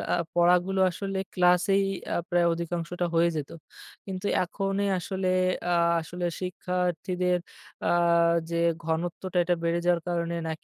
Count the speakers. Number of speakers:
1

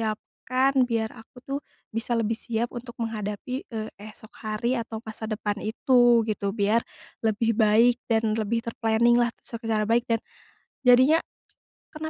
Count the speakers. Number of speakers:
1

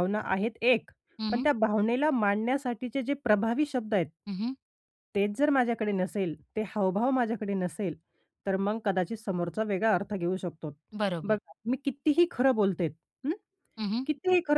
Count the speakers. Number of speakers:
2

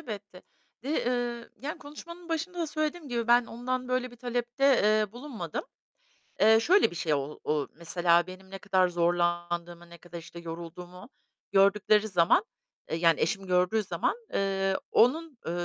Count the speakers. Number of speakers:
1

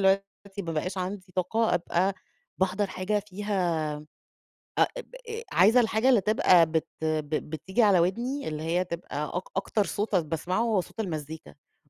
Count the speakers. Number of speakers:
1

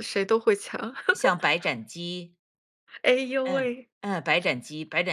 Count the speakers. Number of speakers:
2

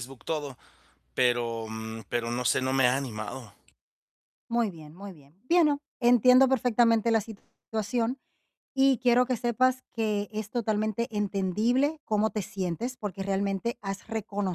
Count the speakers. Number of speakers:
2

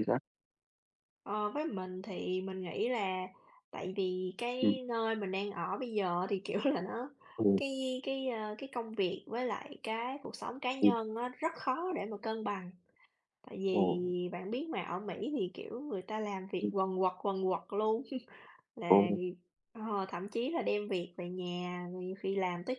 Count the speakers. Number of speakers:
2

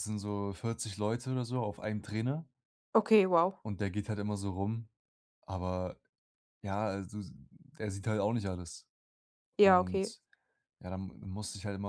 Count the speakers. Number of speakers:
2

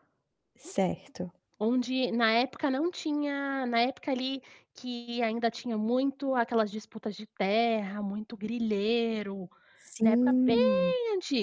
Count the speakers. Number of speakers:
2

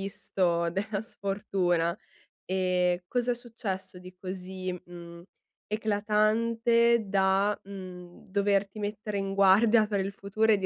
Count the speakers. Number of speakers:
1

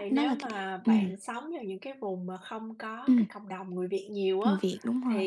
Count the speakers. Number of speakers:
2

